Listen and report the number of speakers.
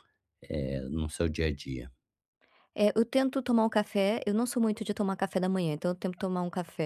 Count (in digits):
2